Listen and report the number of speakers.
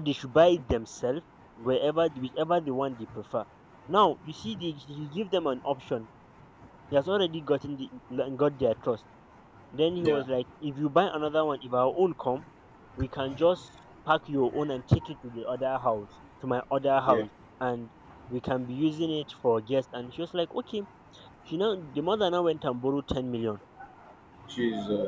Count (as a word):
two